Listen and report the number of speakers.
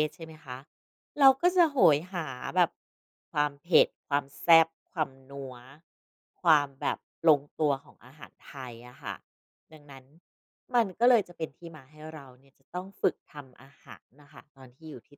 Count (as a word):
one